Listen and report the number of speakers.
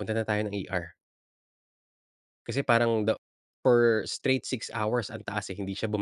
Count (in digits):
1